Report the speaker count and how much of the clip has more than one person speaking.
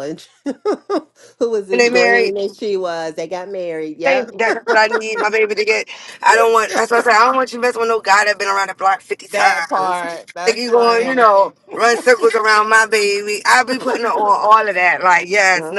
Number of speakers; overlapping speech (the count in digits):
2, about 17%